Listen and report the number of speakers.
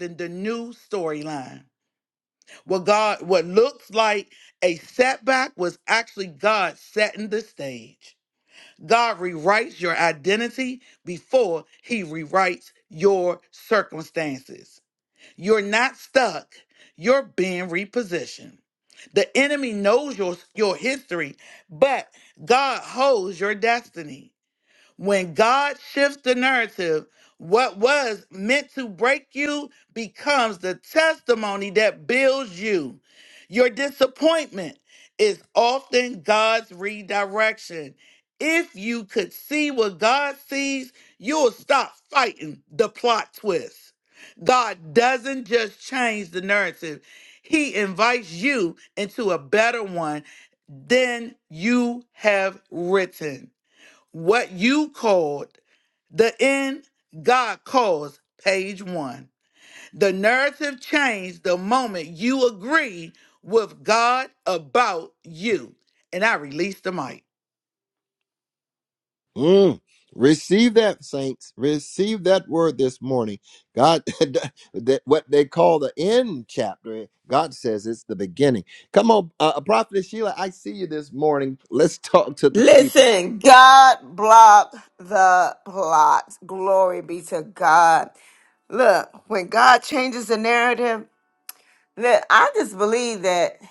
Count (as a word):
three